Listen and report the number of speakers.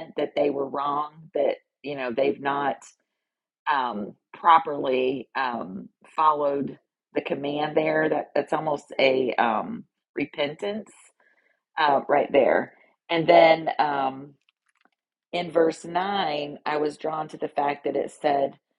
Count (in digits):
1